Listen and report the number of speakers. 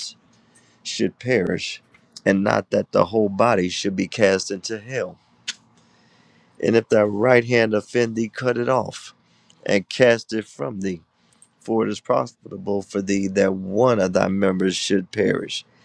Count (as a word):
one